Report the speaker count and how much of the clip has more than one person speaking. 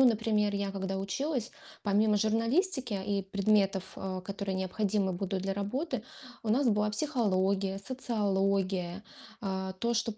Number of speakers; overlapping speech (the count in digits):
1, no overlap